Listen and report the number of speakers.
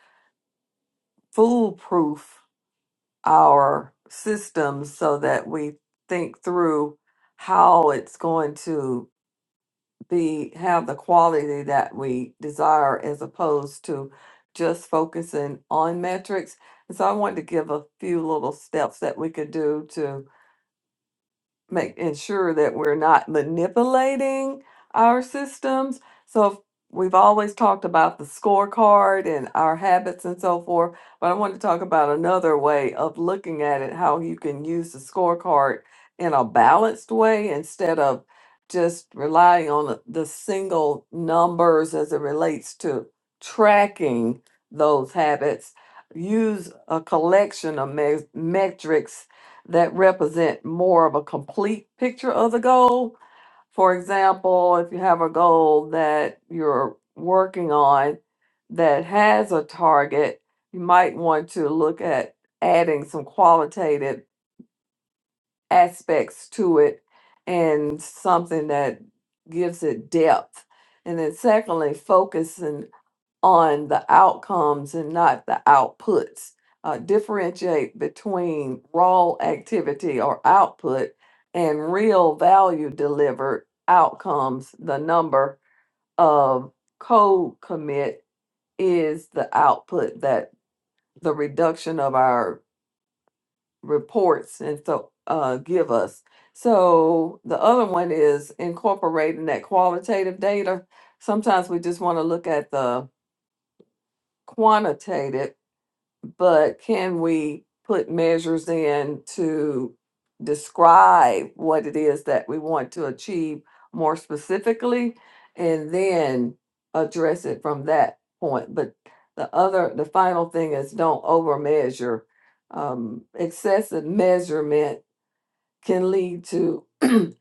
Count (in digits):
1